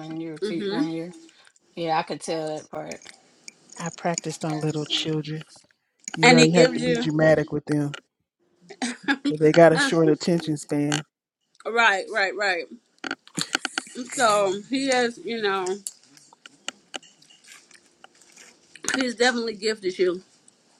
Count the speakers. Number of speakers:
3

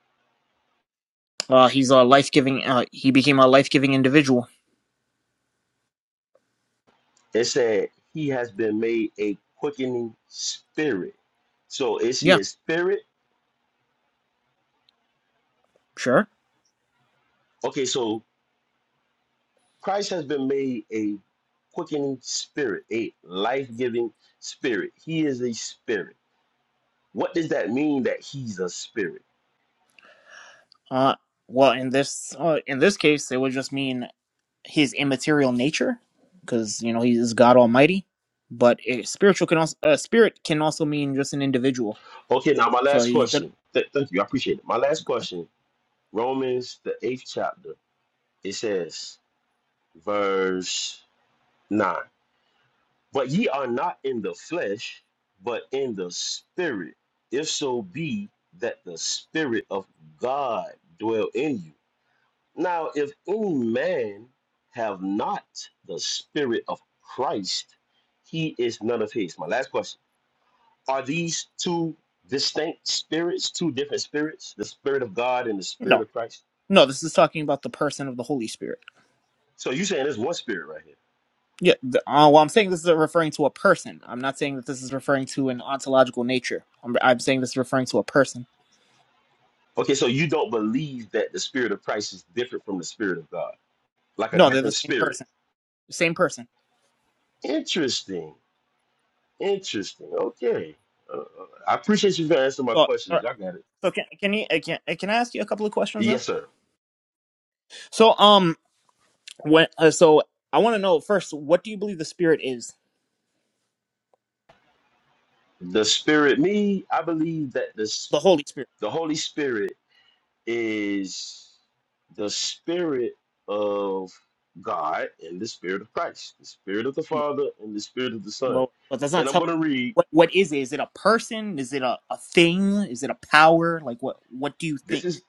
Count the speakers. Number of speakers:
2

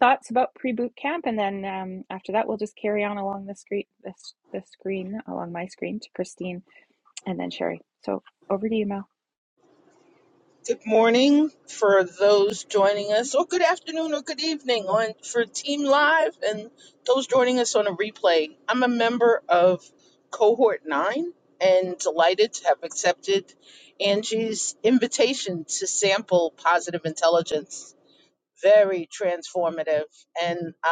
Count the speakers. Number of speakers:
2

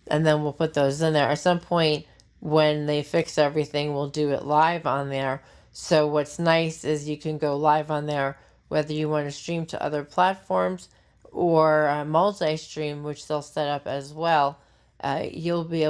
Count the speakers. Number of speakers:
1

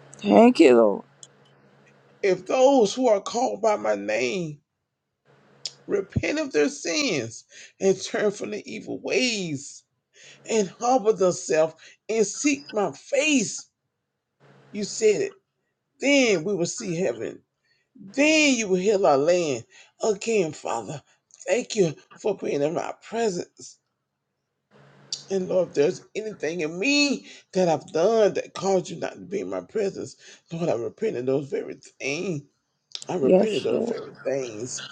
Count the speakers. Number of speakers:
2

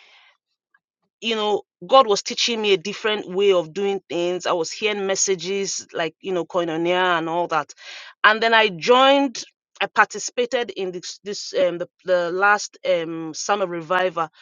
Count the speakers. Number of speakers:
1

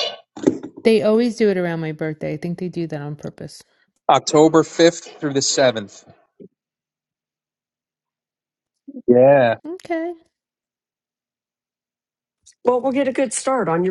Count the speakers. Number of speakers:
3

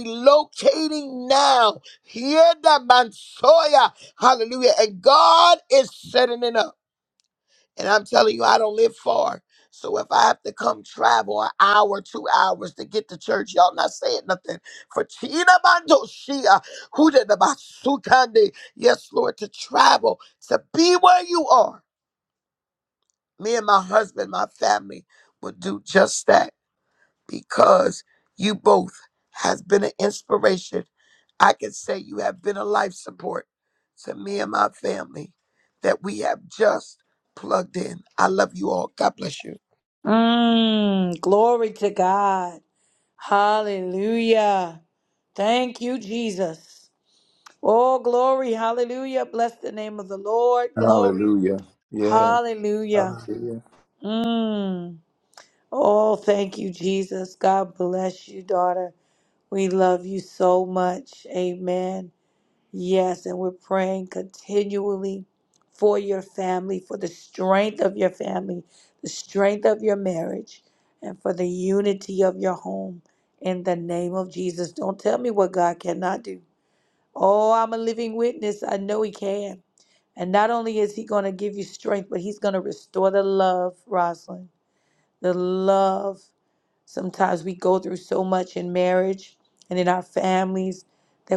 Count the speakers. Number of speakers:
3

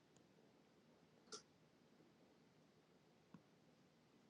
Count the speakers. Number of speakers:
0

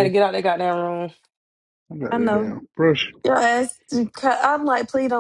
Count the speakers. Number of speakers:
3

